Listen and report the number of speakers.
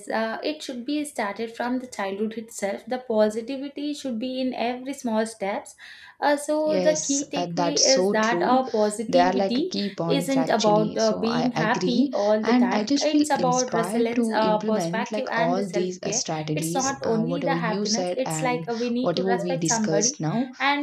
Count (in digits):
2